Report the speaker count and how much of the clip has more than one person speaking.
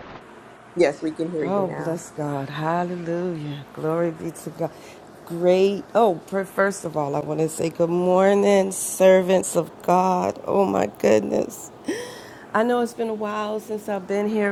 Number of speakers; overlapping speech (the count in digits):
2, about 4%